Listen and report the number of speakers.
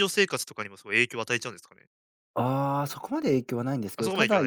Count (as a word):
two